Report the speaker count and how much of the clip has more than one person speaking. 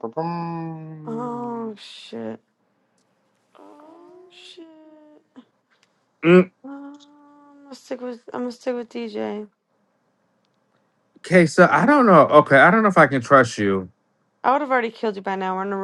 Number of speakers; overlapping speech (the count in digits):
3, about 2%